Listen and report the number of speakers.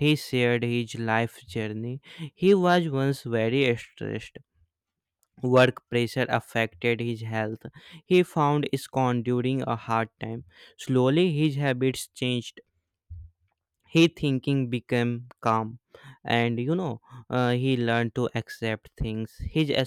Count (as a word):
one